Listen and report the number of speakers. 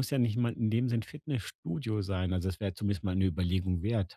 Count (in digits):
1